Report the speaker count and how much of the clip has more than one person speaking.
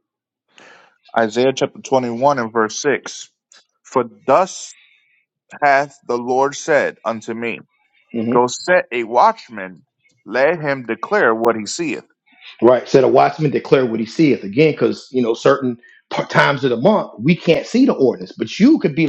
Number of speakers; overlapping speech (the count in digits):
2, under 1%